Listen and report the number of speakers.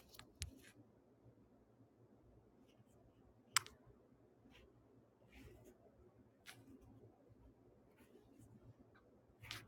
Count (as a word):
zero